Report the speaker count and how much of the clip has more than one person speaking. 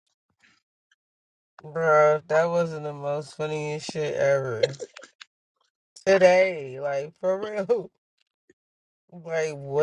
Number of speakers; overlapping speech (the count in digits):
1, no overlap